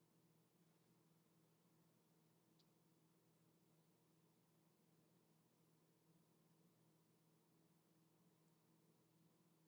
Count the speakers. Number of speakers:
0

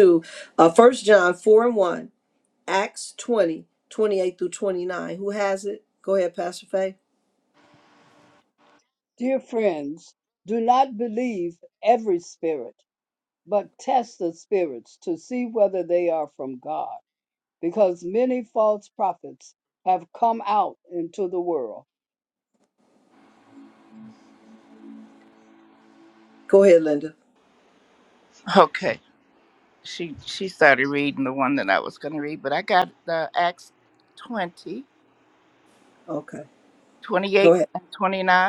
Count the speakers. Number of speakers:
3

